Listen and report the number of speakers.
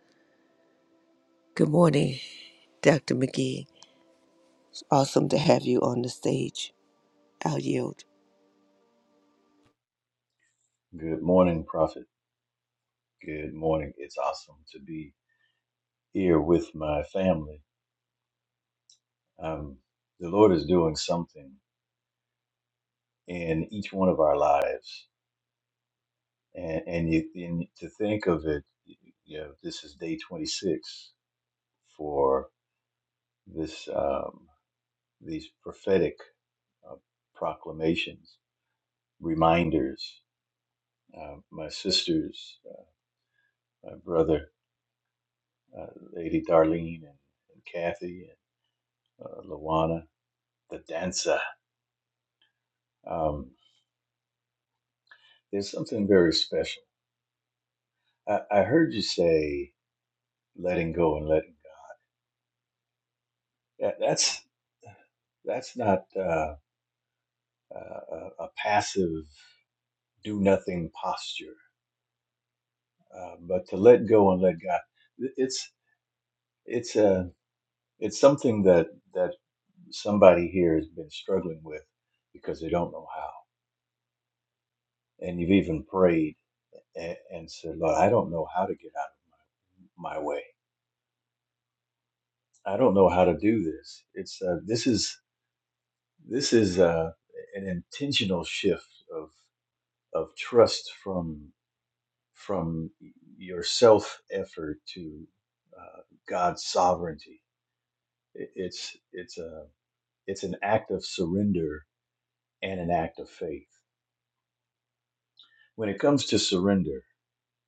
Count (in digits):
2